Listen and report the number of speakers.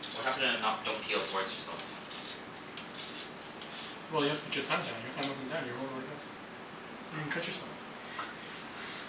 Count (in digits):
2